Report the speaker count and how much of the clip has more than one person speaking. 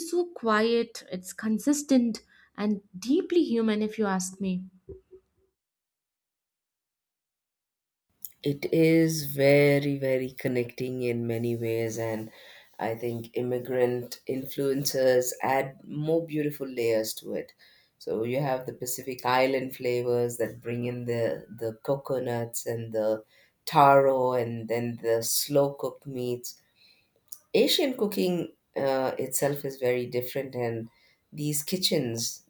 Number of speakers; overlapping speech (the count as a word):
two, no overlap